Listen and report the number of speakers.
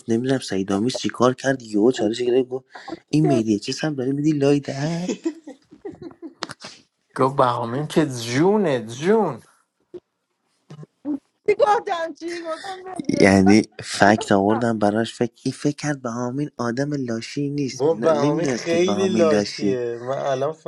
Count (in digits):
4